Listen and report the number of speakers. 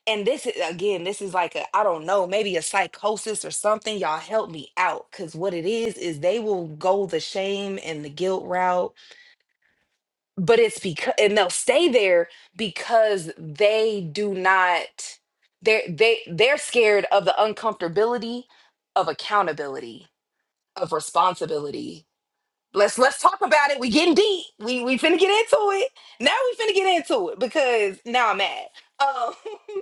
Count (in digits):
1